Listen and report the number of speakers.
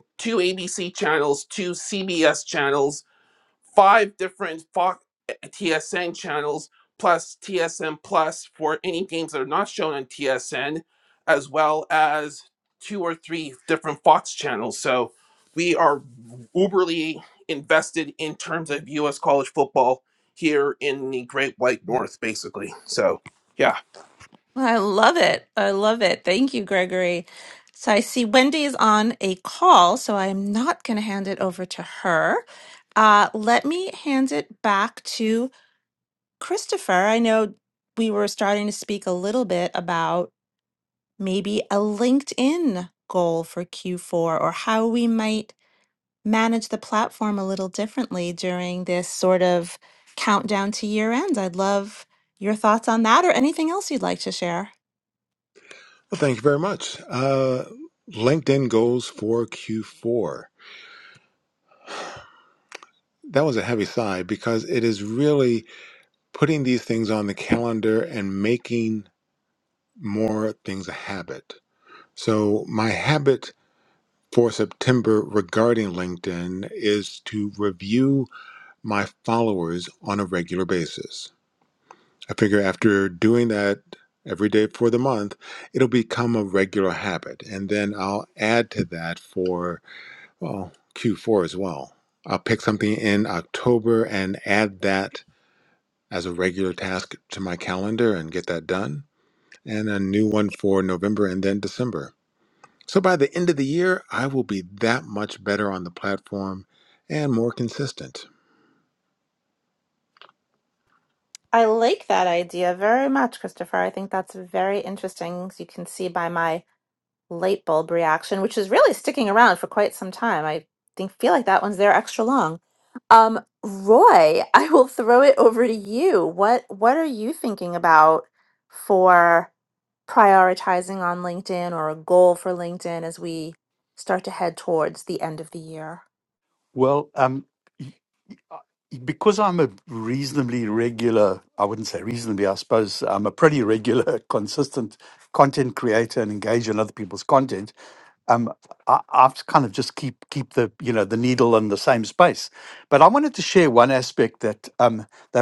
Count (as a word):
four